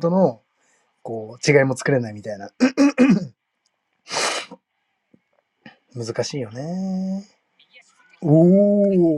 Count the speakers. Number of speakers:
1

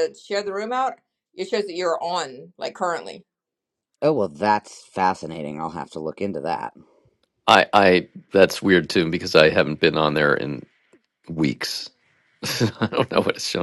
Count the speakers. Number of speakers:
3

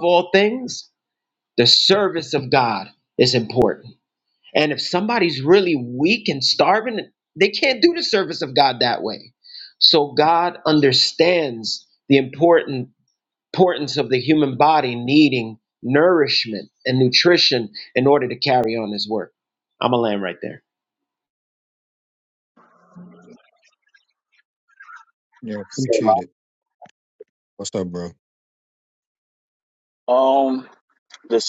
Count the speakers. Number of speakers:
3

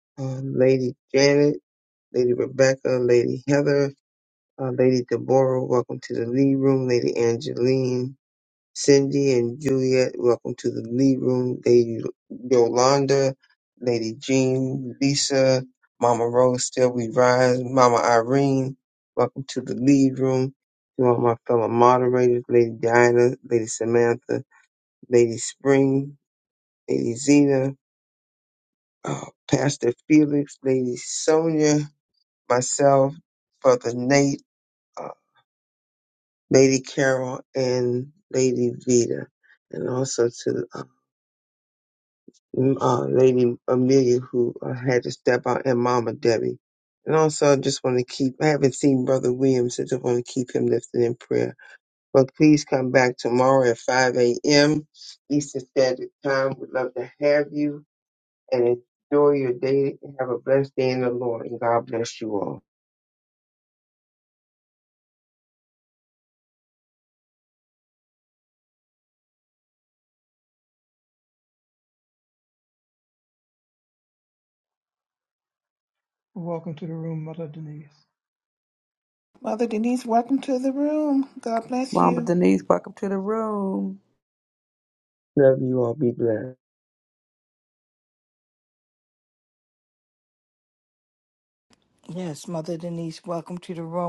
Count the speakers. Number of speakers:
5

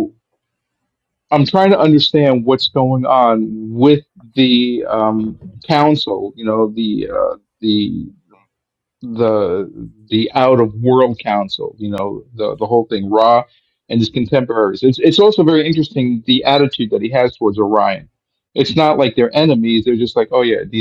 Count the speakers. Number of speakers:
1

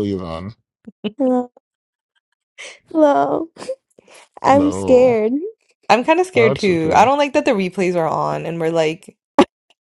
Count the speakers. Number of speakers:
3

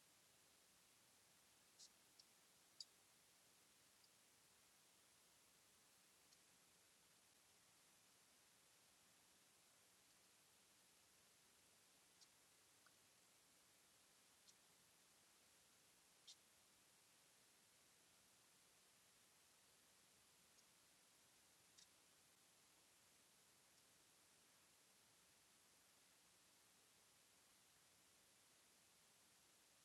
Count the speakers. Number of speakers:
0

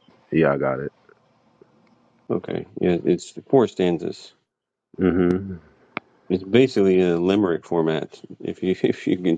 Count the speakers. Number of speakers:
2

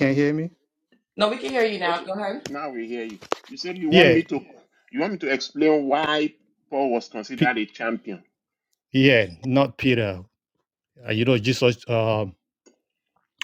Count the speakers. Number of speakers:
3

